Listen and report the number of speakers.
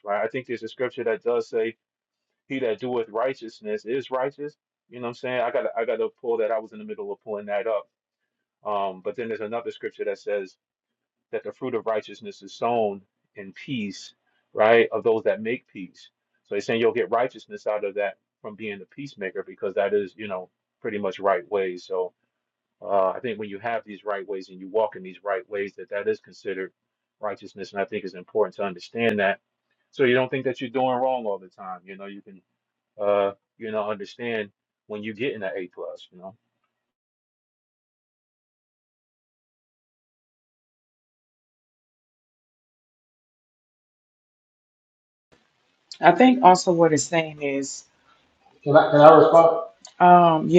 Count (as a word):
three